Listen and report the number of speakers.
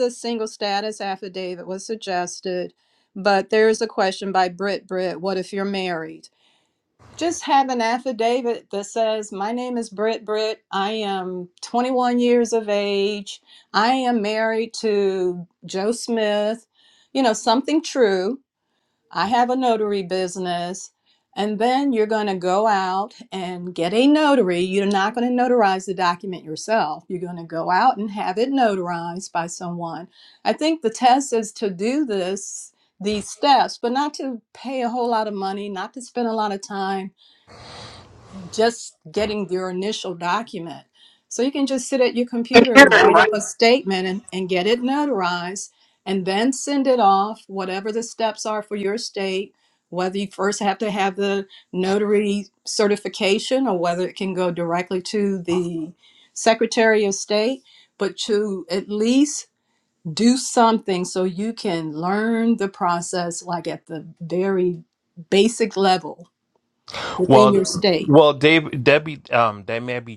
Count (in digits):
2